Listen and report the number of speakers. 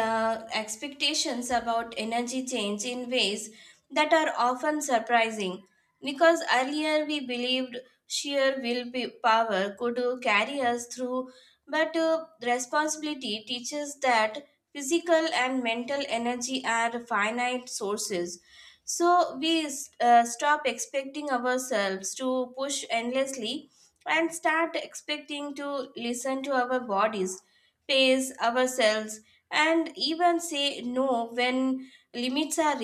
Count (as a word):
one